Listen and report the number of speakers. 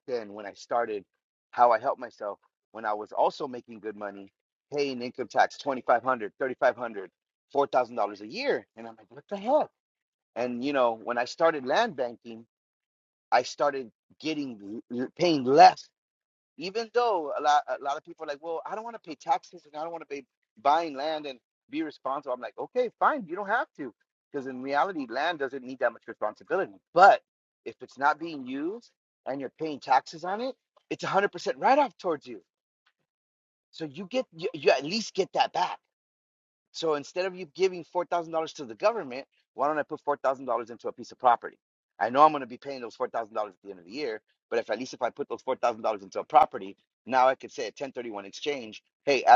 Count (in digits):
1